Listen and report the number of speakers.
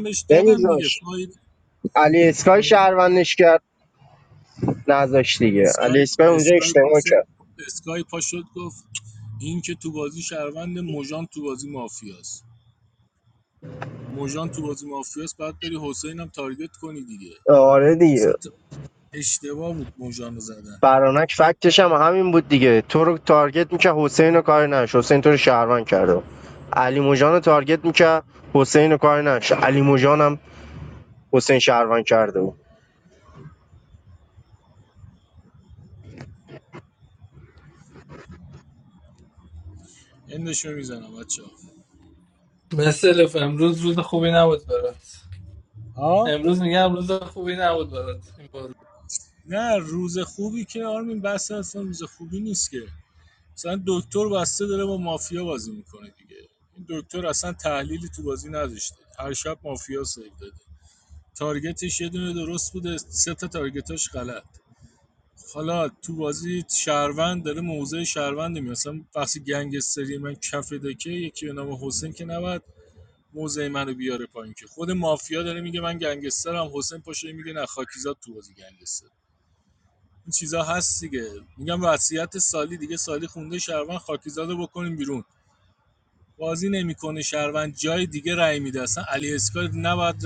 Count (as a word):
three